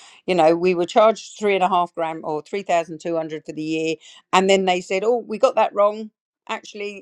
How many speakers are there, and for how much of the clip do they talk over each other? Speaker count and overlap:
1, no overlap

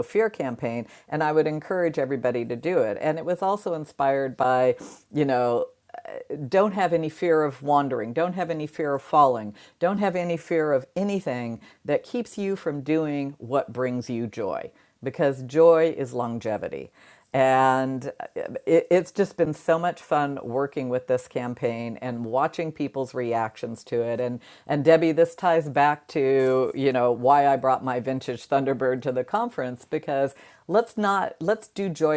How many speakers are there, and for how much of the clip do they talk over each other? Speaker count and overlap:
1, no overlap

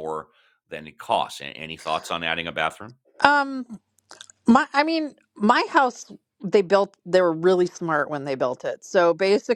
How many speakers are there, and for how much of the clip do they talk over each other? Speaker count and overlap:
2, no overlap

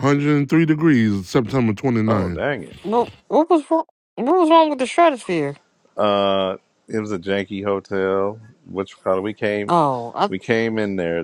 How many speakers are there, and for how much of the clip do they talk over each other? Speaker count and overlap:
3, about 3%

